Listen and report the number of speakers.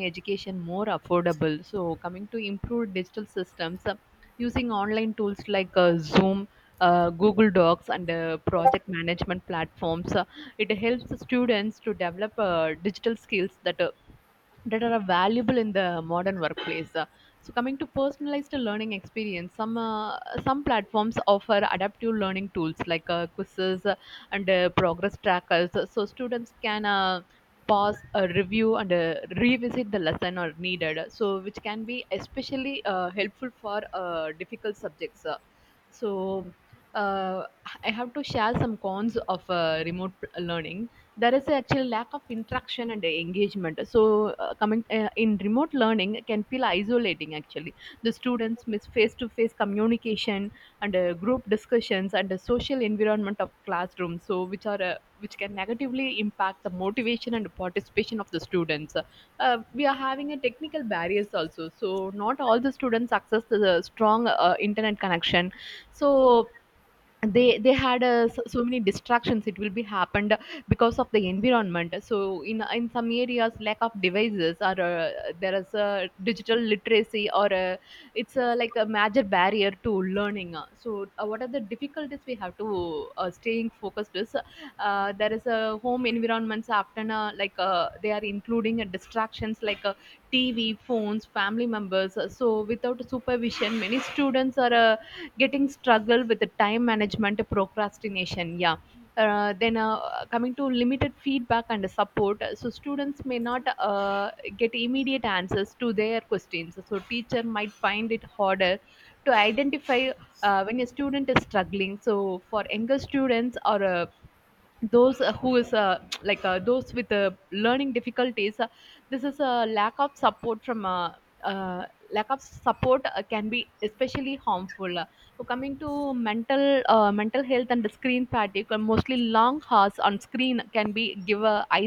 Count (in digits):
1